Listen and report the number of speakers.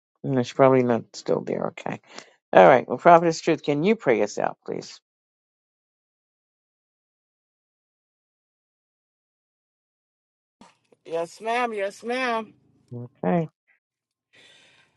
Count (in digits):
2